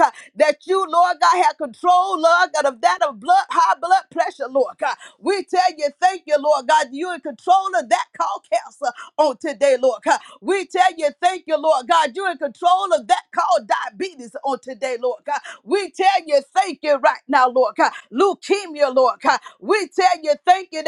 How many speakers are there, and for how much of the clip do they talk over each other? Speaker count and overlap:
one, no overlap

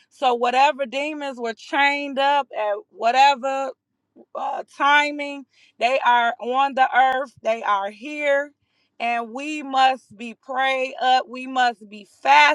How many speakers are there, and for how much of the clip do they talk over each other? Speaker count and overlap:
one, no overlap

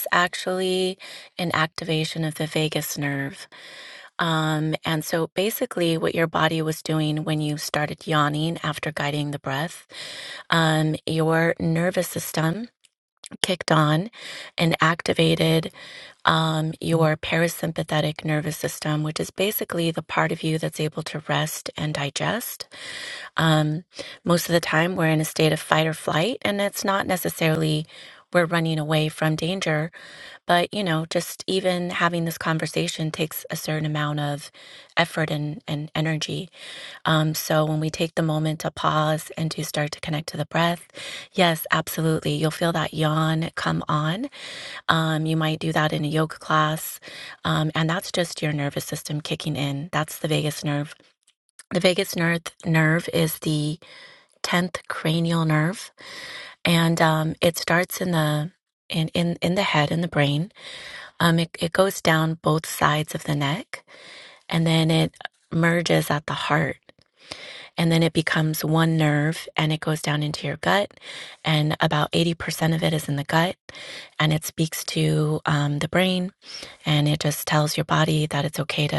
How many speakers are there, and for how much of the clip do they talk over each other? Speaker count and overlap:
one, no overlap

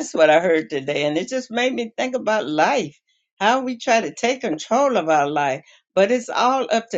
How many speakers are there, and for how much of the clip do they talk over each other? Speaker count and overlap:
one, no overlap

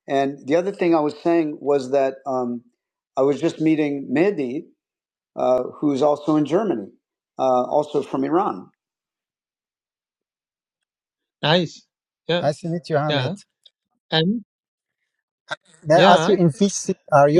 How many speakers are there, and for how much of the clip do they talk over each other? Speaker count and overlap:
three, about 4%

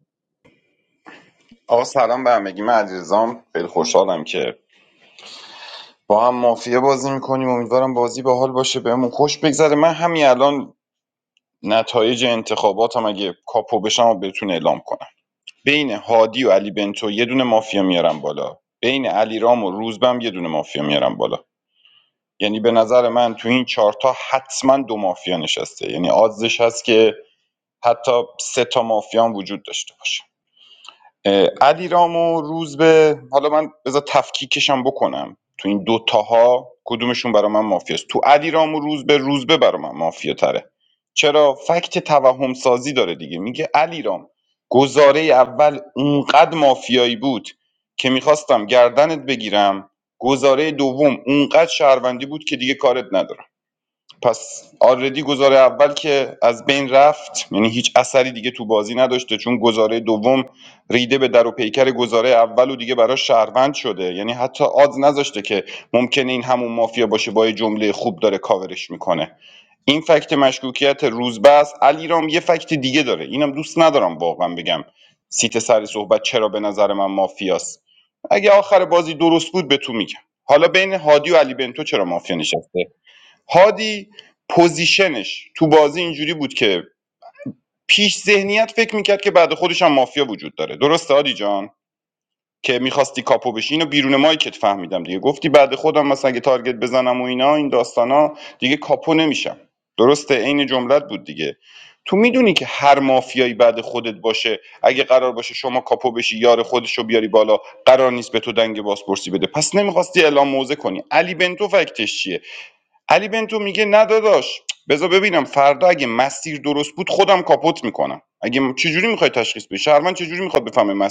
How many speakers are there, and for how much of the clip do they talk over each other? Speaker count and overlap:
one, no overlap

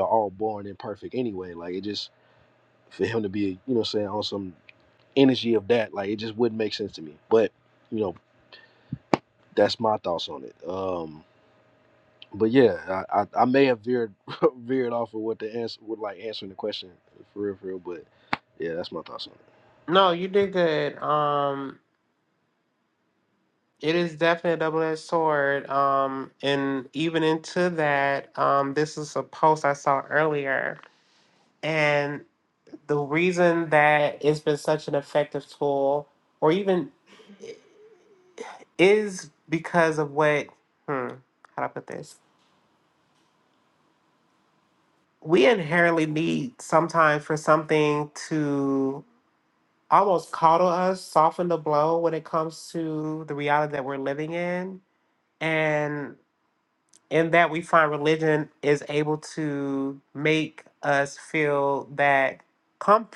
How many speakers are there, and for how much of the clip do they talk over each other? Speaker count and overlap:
two, no overlap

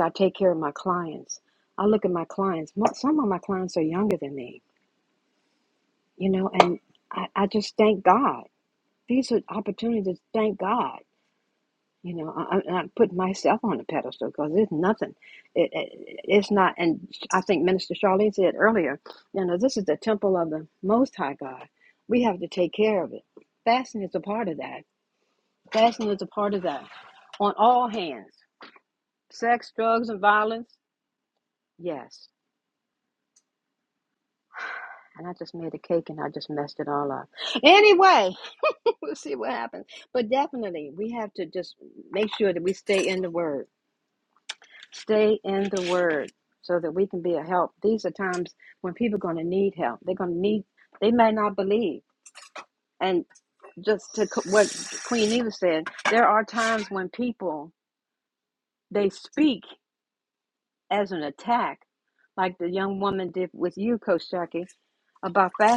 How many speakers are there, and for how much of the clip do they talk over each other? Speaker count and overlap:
one, no overlap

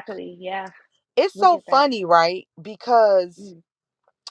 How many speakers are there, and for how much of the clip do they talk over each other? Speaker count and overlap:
two, about 12%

